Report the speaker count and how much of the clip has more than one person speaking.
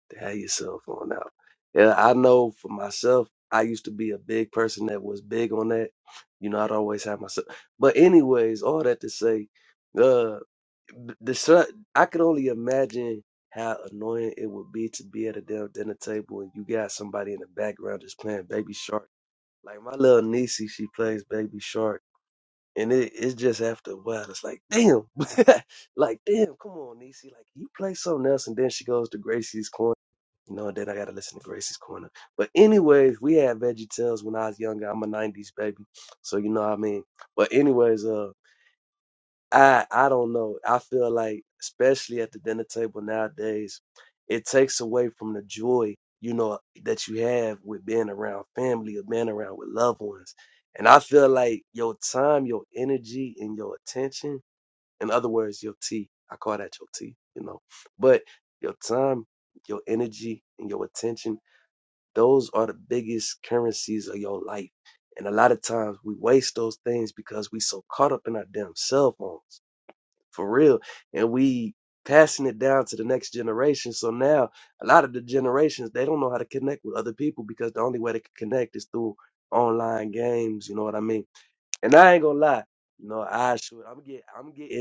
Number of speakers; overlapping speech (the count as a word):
one, no overlap